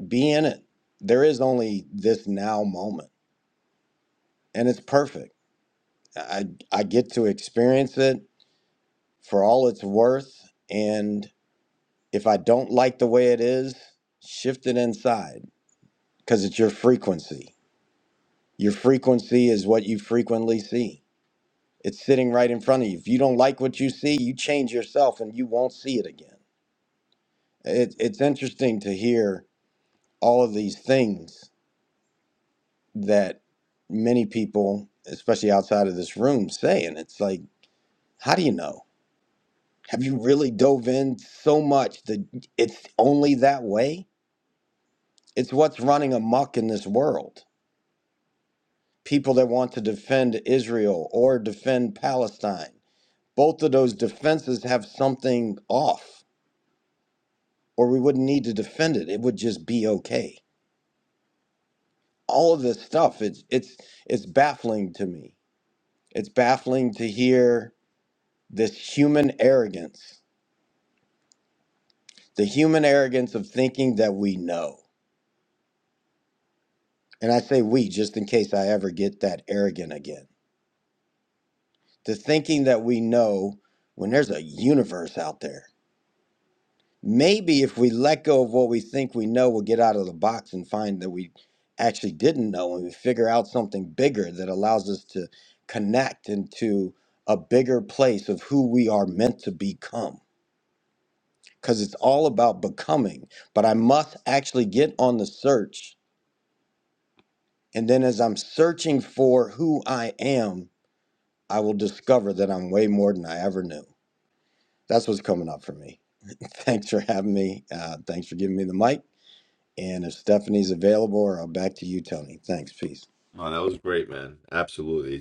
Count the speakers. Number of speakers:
2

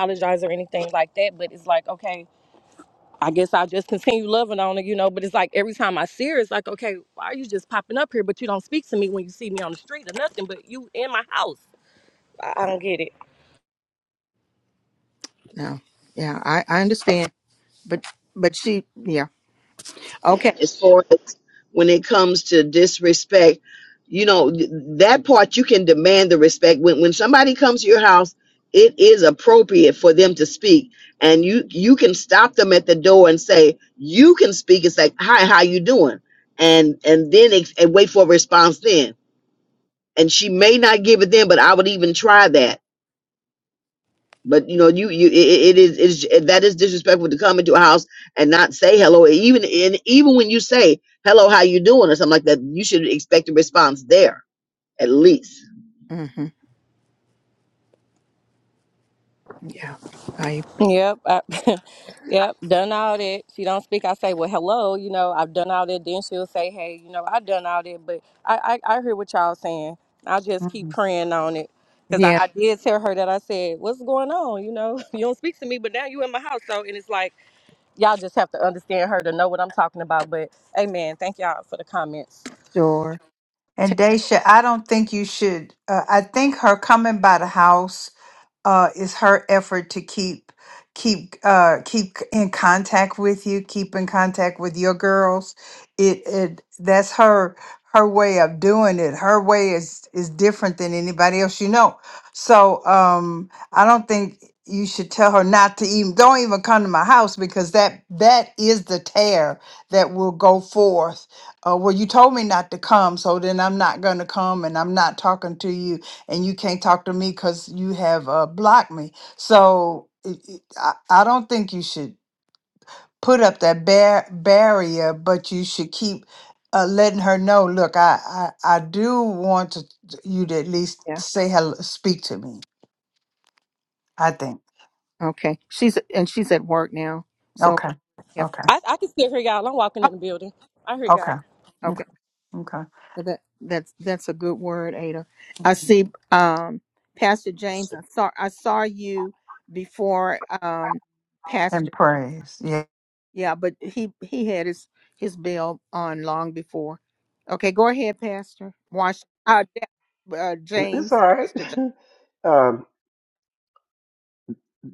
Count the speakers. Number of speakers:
5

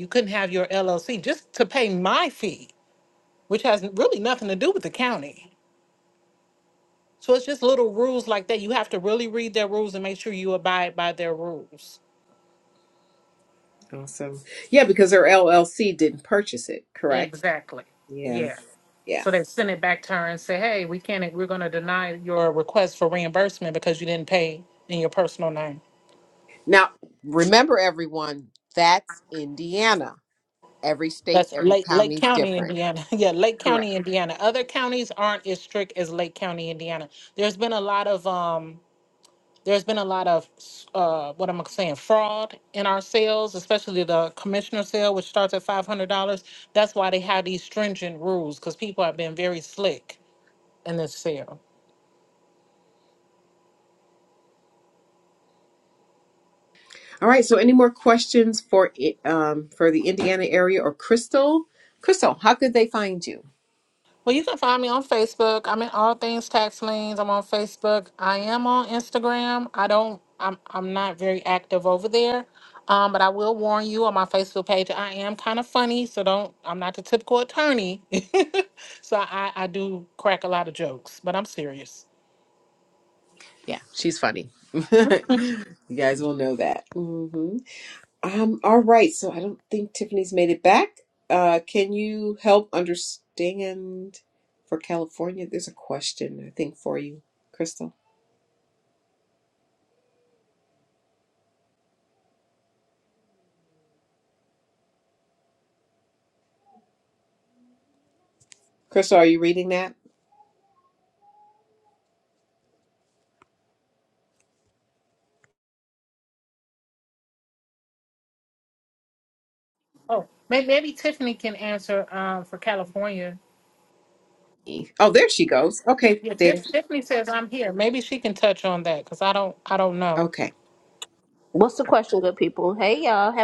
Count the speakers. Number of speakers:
3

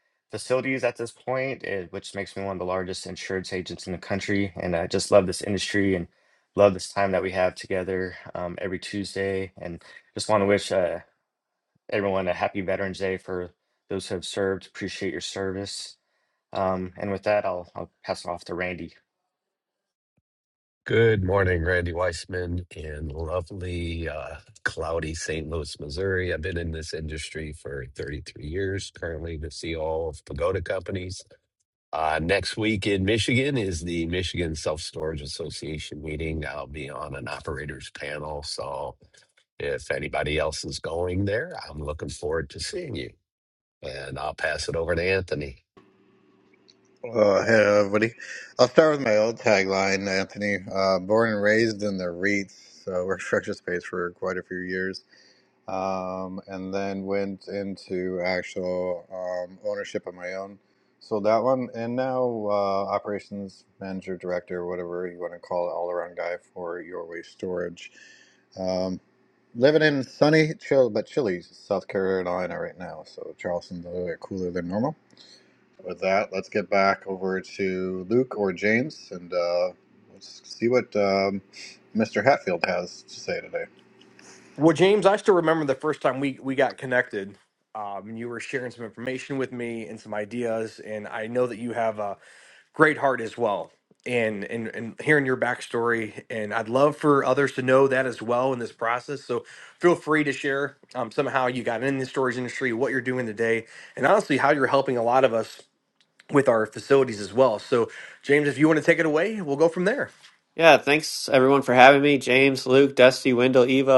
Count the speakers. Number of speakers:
5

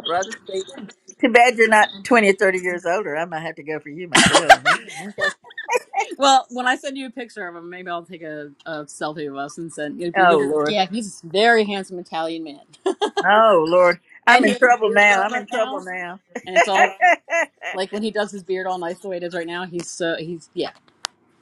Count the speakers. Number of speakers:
2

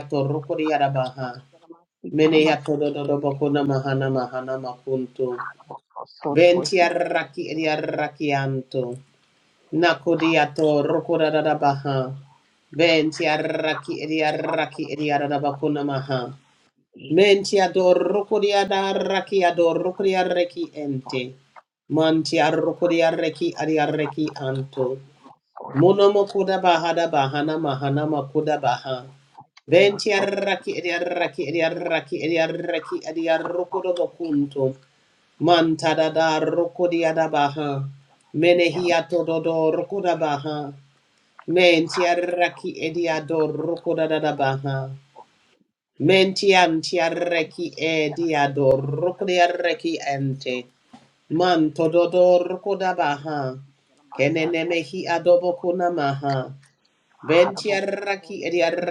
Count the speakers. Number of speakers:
2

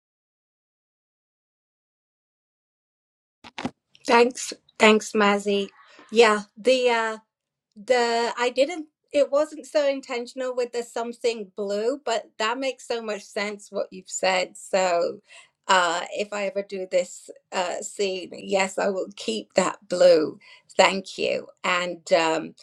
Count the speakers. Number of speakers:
1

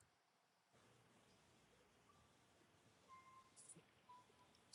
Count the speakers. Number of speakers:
0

